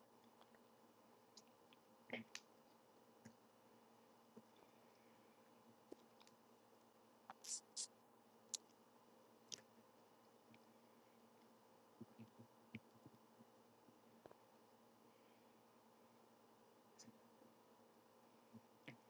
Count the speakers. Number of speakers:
0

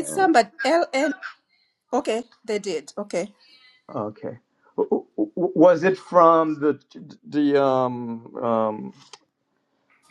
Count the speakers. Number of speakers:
2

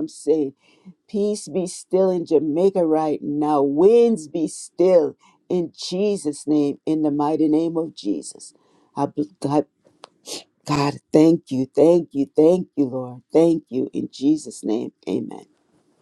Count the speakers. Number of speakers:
1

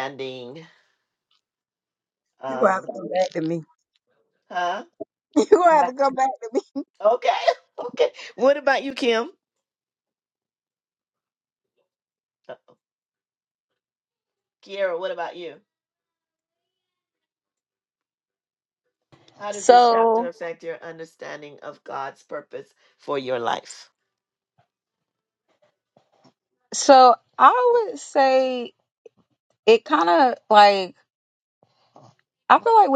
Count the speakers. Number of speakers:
3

